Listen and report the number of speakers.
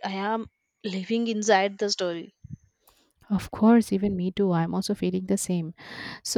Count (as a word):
two